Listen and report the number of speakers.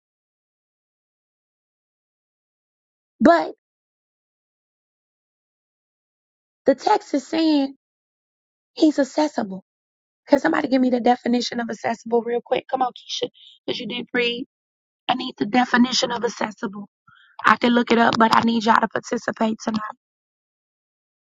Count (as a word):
one